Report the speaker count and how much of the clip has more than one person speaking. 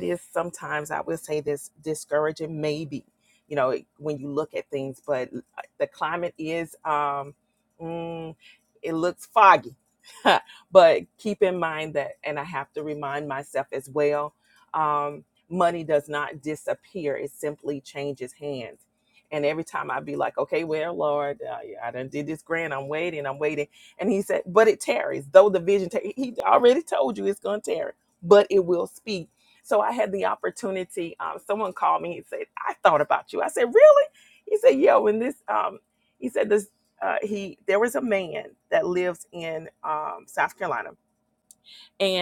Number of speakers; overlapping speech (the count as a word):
one, no overlap